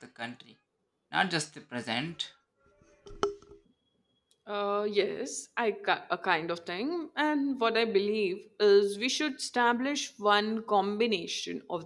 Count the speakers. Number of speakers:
2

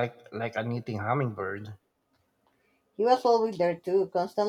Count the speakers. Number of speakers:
2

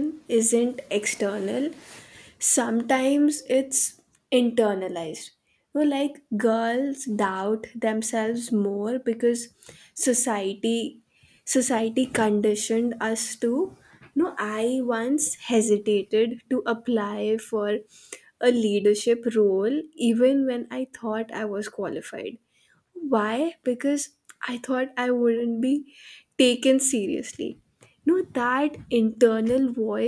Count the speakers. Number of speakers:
1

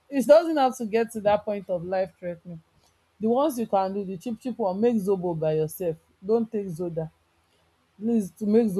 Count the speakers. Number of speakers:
1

